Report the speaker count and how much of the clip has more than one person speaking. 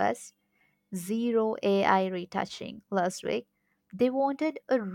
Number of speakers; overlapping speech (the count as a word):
one, no overlap